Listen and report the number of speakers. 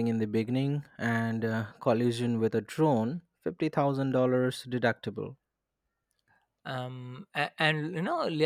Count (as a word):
two